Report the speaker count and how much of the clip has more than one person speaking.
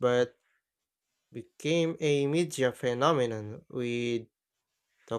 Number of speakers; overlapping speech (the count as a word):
one, no overlap